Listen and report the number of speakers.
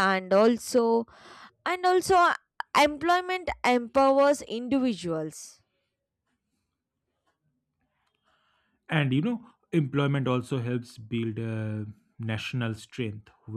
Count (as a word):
two